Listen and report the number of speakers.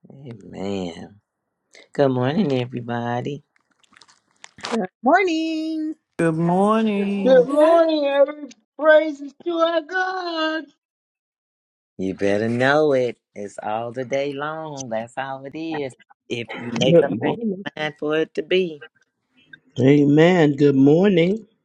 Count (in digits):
5